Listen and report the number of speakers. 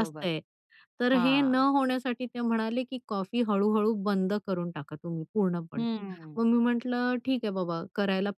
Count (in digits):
2